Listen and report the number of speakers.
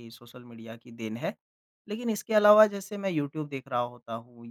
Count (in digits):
1